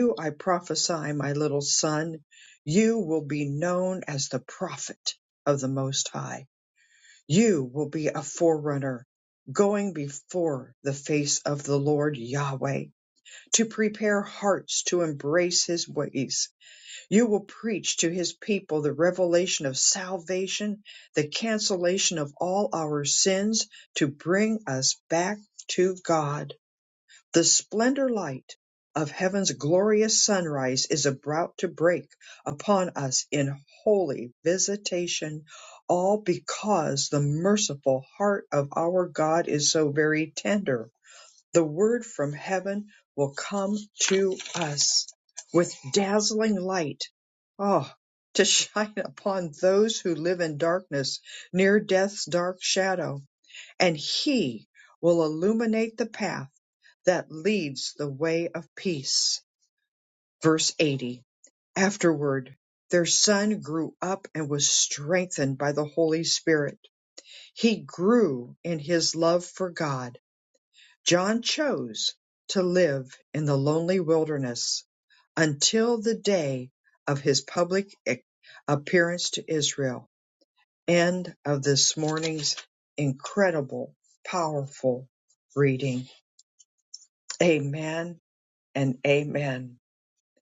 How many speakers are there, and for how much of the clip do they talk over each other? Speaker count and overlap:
1, no overlap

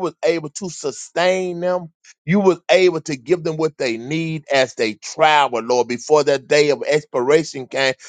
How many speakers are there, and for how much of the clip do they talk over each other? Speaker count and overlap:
1, no overlap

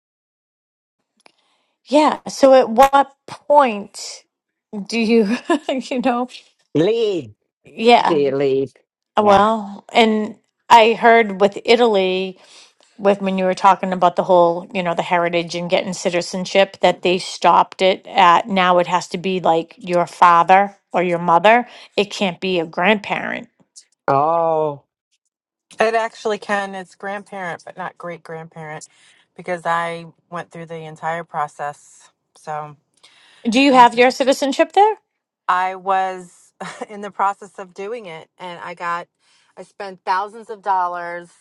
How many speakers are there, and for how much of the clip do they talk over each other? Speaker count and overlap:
3, about 1%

